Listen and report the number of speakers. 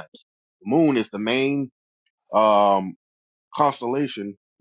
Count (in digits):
1